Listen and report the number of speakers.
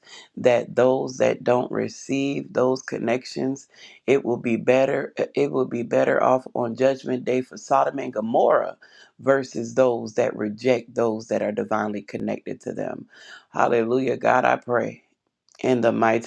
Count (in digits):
1